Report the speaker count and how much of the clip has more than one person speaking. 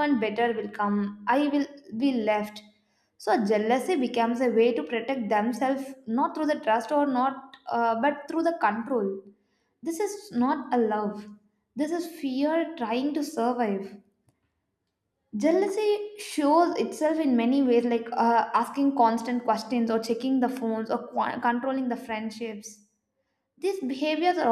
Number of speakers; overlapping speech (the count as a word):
one, no overlap